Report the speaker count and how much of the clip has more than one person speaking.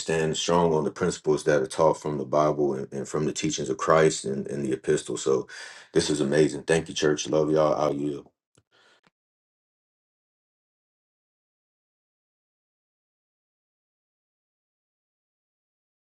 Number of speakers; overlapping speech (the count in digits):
1, no overlap